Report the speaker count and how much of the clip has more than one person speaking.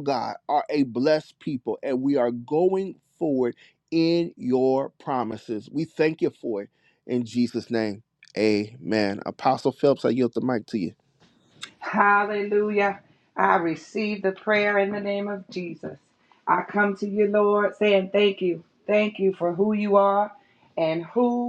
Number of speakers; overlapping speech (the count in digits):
2, no overlap